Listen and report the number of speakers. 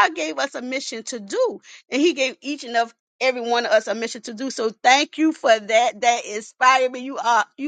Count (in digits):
1